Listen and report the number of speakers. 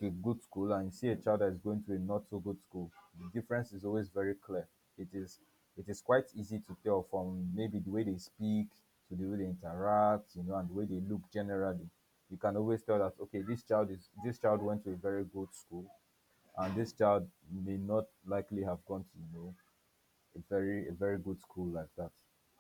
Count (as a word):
one